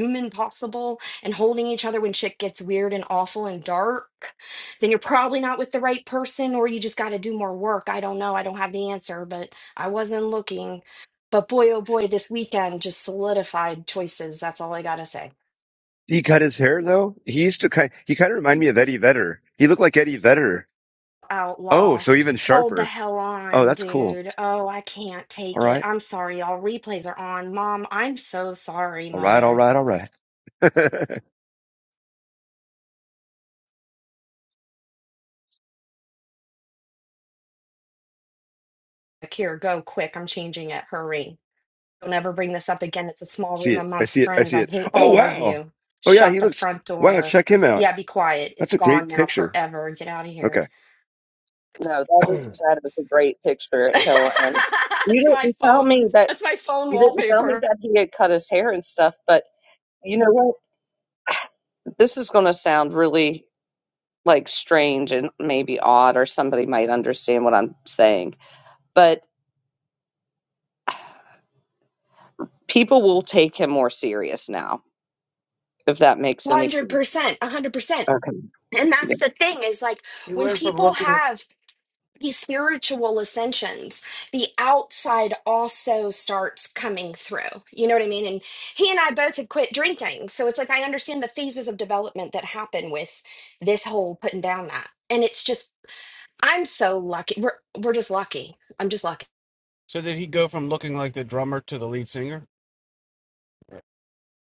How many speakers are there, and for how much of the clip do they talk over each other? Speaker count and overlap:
4, about 10%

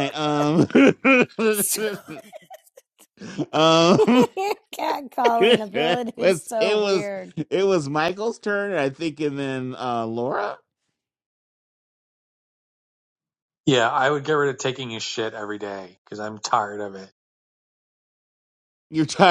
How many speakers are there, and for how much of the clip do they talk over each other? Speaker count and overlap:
3, about 6%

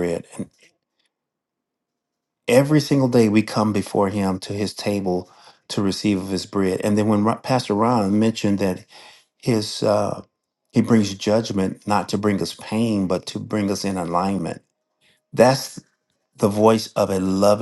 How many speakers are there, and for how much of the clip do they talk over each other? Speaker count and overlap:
1, no overlap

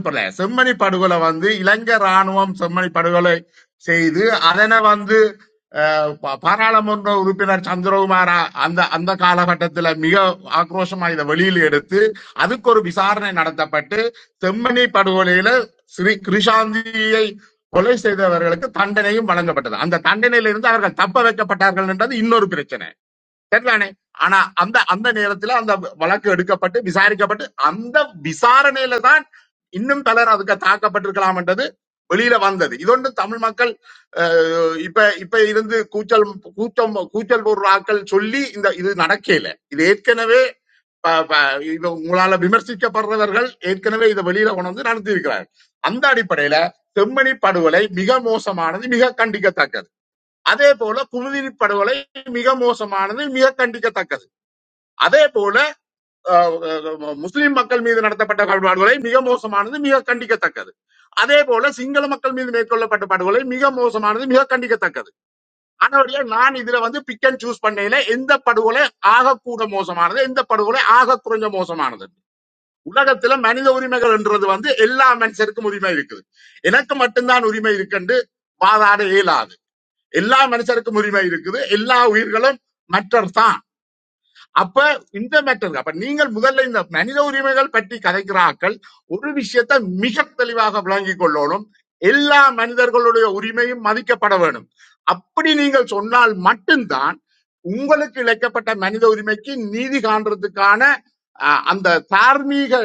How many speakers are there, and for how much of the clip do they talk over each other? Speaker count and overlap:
1, no overlap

